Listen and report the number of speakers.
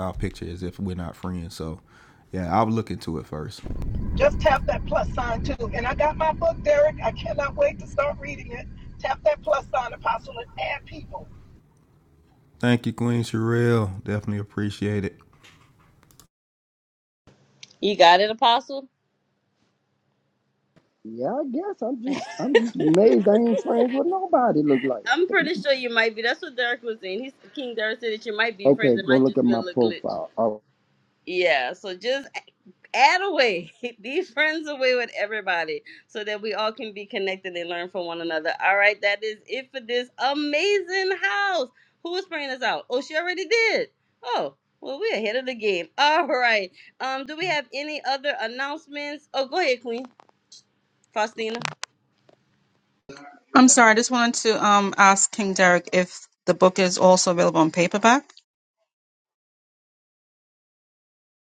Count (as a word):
five